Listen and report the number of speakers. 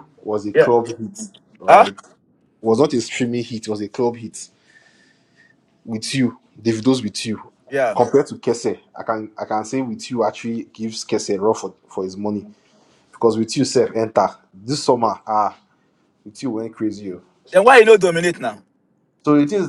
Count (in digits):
2